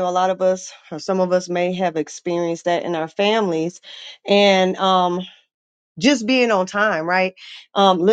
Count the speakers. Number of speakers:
one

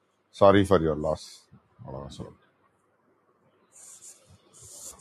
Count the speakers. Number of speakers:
one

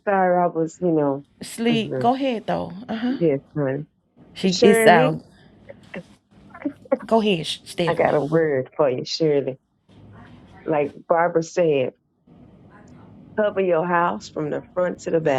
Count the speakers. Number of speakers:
two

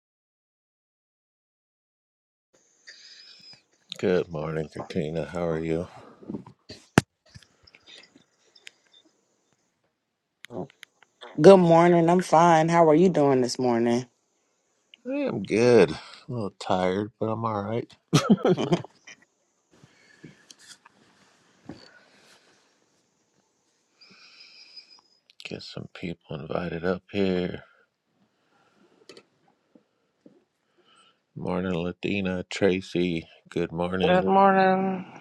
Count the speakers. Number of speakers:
three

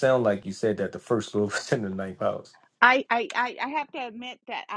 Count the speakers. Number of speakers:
two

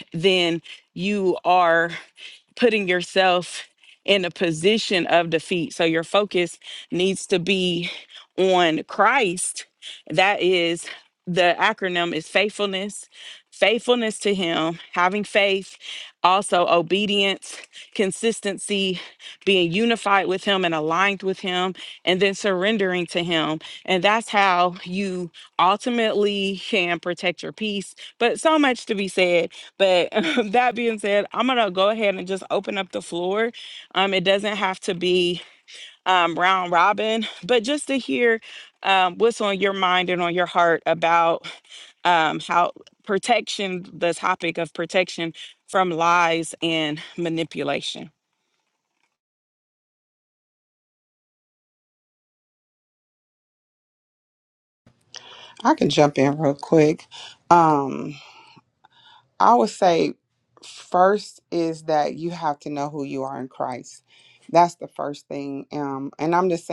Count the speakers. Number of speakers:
two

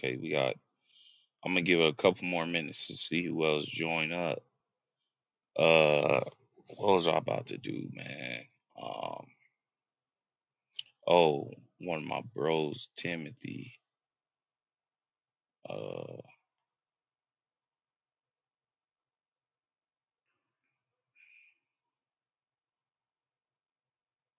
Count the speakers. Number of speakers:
one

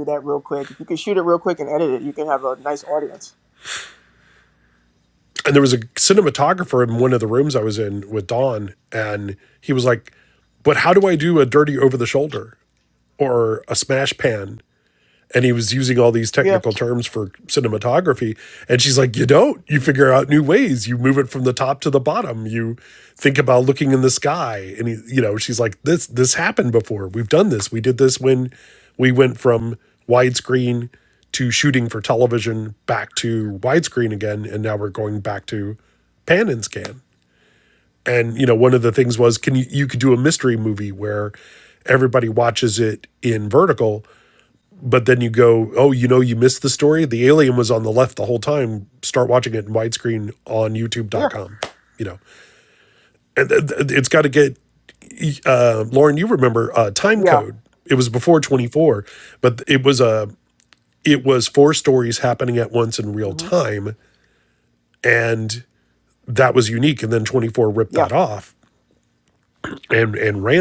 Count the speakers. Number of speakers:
two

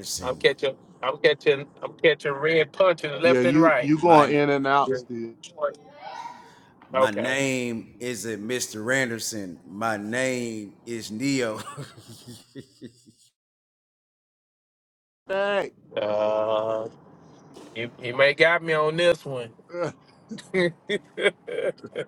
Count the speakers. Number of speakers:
three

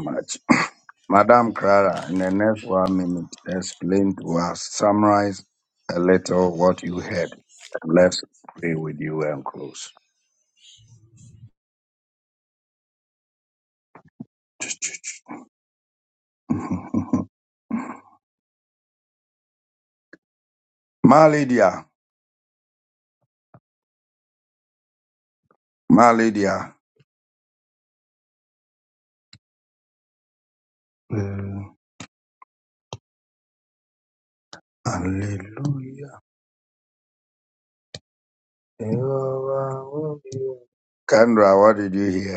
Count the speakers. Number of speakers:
one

